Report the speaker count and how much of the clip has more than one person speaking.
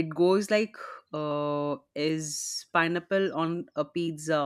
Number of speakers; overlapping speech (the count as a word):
one, no overlap